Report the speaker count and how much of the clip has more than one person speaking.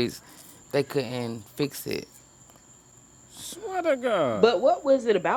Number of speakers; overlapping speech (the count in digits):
3, about 3%